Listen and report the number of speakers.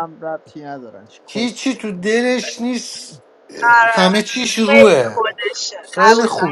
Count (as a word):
three